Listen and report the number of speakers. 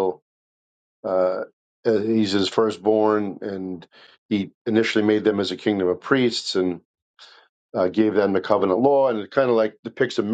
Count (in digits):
1